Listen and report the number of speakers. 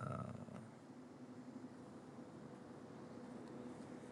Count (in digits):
0